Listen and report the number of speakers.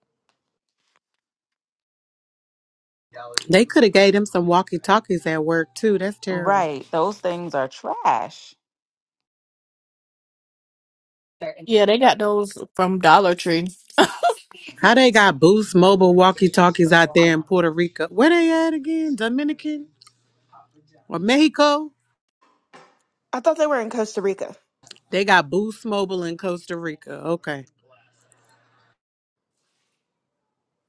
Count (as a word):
four